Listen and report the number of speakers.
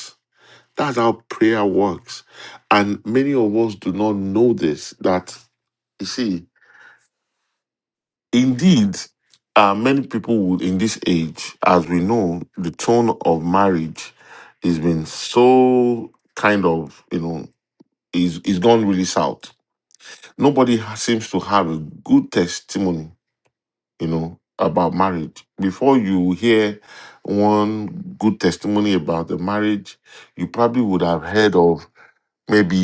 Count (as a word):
one